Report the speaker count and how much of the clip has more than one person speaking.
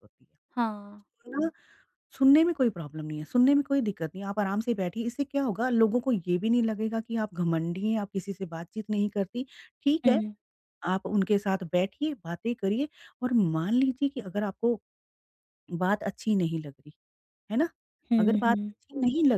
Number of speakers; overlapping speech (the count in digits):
2, about 3%